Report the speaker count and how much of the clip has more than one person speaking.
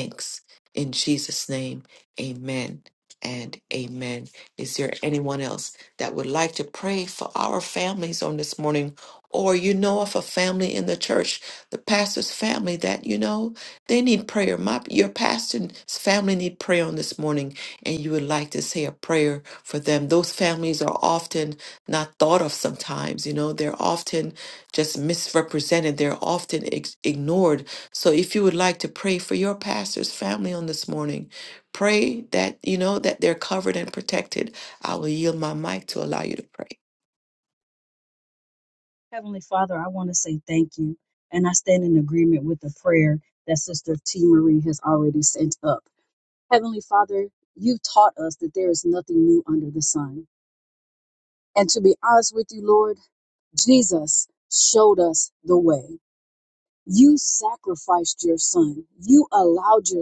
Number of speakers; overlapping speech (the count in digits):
2, no overlap